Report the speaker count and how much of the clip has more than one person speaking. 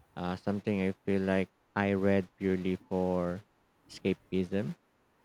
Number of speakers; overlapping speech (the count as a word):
one, no overlap